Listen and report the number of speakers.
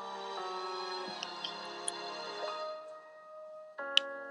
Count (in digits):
0